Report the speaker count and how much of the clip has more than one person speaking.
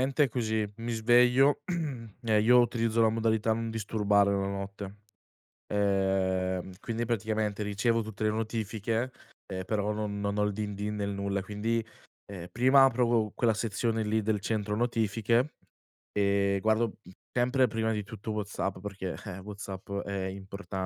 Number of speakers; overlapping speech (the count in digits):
1, no overlap